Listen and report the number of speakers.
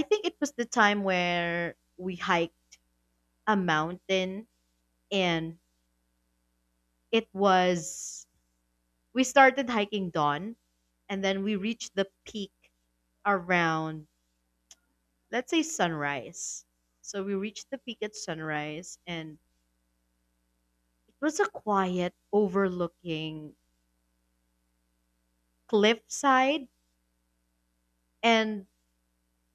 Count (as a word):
one